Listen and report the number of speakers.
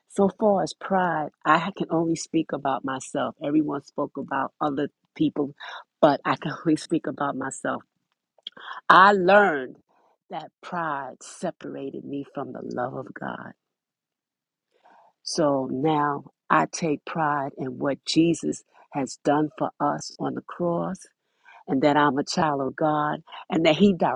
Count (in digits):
1